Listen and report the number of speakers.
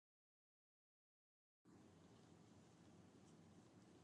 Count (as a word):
zero